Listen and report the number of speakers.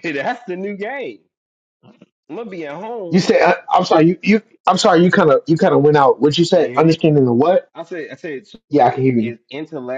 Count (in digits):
2